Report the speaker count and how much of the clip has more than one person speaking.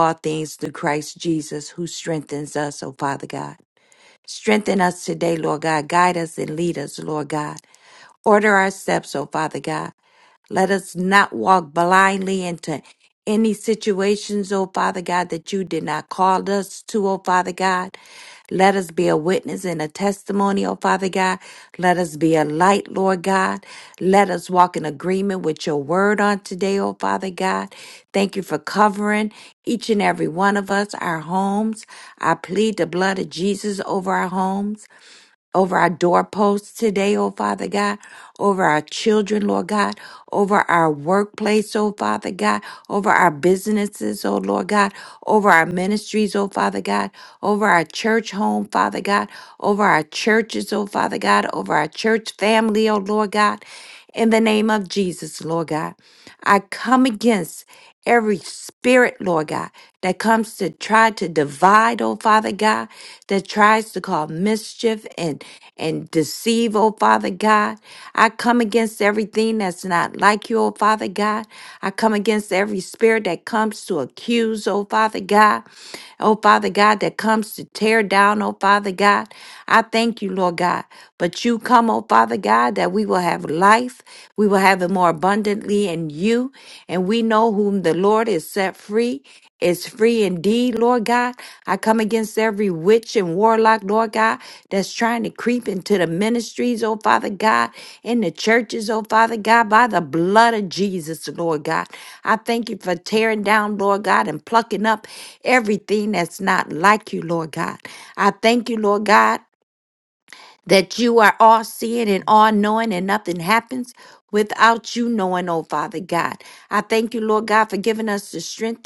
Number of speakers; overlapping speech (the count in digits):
1, no overlap